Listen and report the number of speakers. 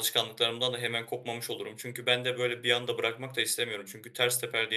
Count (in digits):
1